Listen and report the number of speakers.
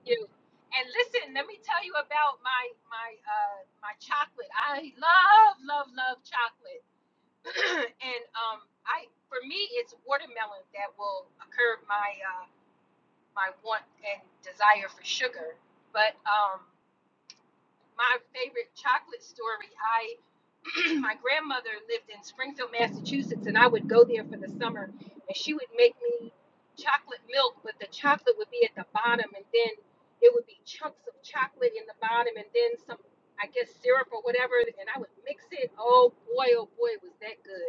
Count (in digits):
1